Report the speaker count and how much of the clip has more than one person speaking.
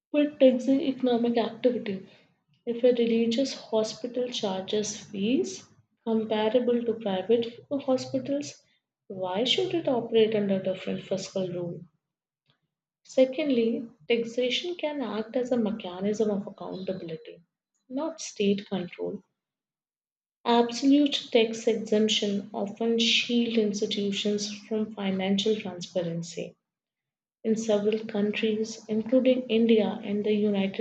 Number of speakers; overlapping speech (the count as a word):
one, no overlap